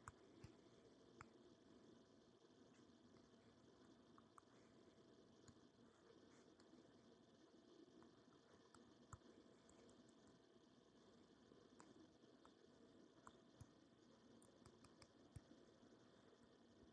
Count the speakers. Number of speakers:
0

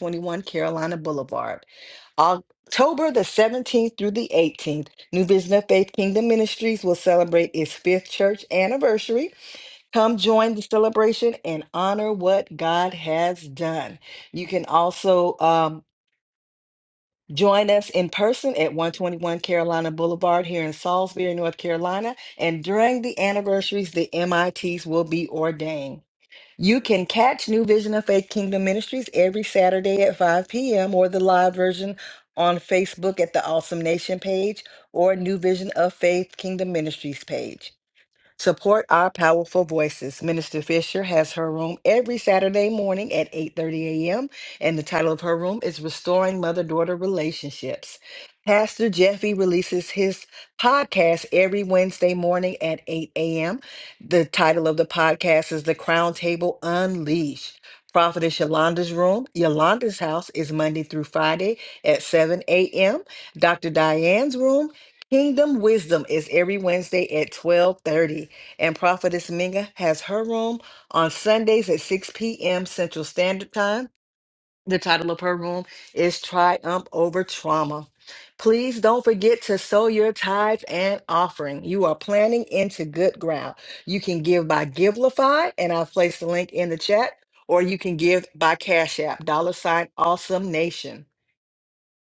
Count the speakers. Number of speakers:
1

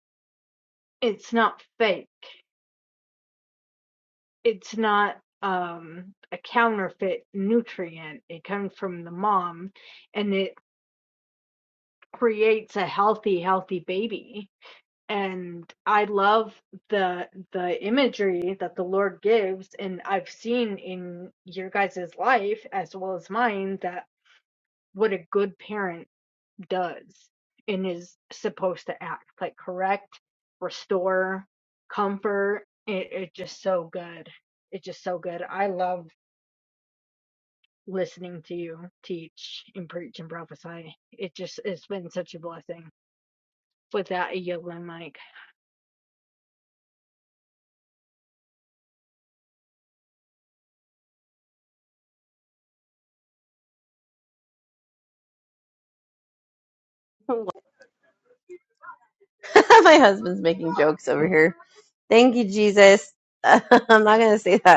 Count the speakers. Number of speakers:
2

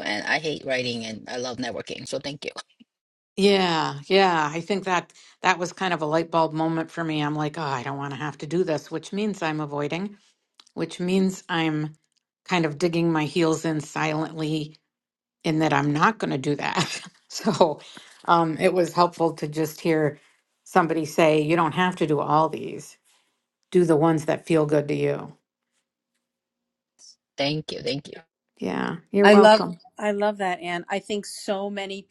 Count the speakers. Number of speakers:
3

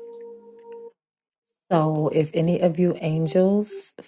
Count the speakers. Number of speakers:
1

